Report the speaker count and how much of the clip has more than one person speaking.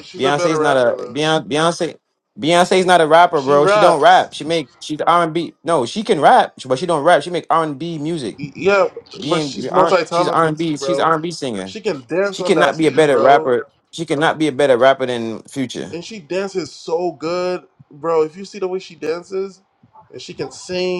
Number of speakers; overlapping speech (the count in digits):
2, about 23%